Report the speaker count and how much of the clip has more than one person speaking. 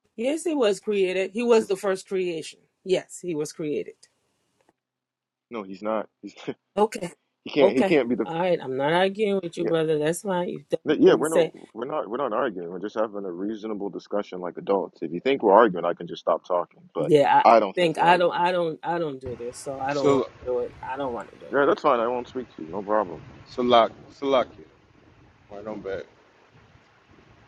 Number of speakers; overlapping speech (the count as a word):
three, about 12%